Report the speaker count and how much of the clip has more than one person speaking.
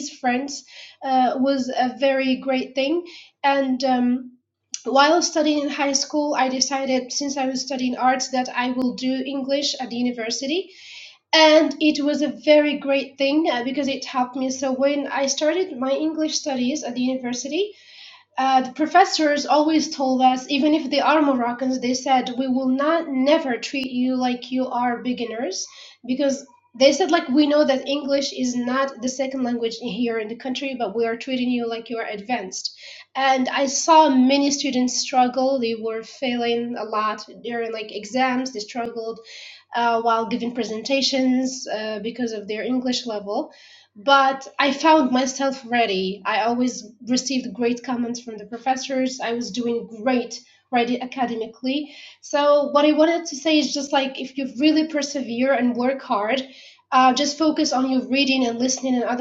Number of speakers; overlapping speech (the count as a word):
one, no overlap